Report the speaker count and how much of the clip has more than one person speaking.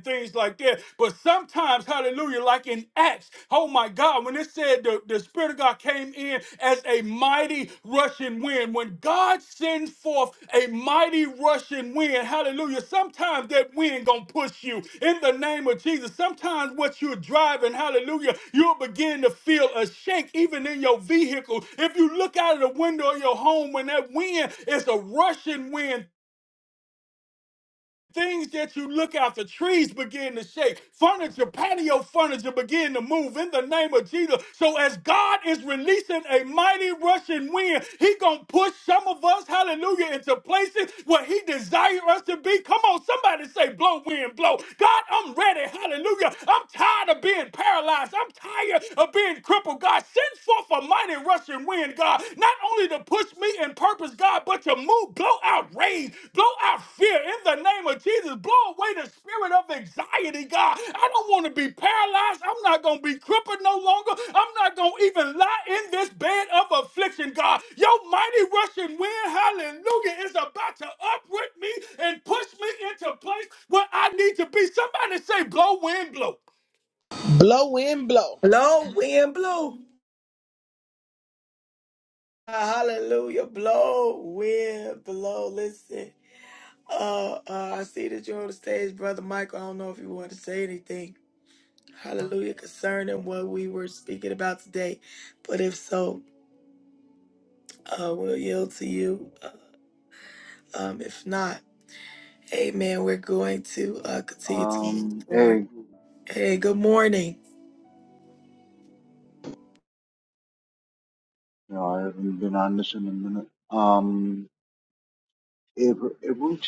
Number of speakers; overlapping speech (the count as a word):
four, about 1%